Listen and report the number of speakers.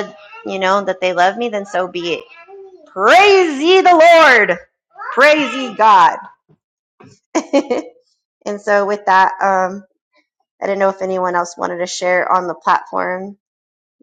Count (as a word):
one